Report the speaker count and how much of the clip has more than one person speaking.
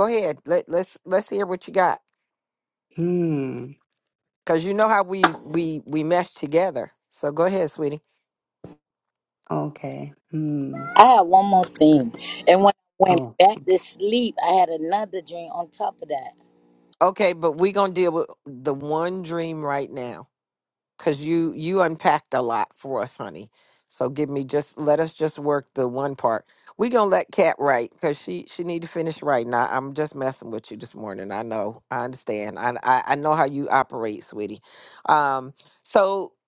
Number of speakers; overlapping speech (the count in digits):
3, about 2%